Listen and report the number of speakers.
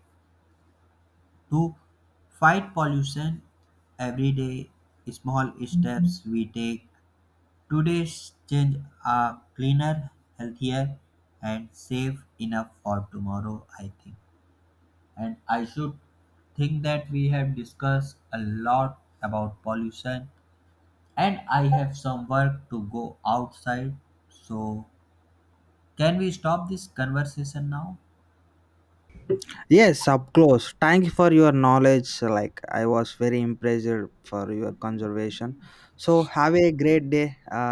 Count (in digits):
2